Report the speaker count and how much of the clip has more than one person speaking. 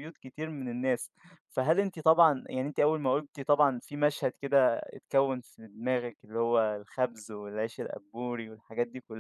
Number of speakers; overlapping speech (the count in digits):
1, no overlap